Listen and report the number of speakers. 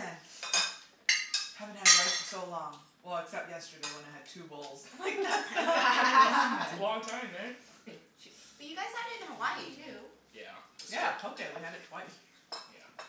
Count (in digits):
3